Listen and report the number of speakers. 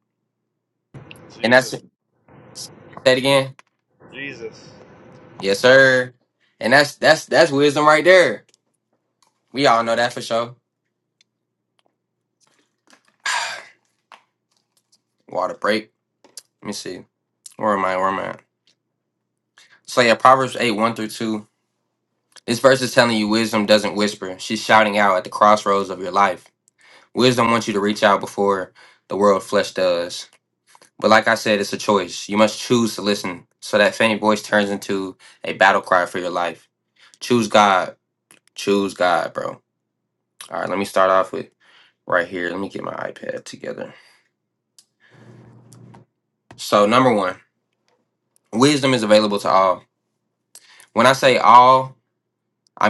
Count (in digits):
2